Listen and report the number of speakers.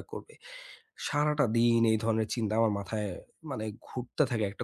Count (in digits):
1